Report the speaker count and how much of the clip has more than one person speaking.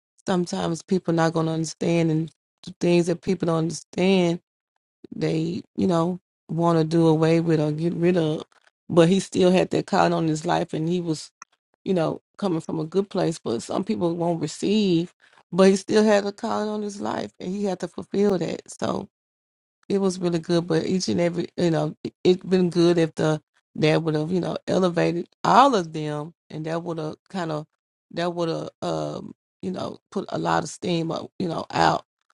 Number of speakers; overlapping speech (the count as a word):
one, no overlap